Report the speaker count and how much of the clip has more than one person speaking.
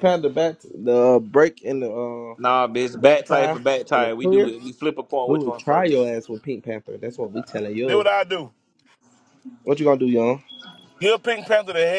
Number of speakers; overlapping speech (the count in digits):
3, about 16%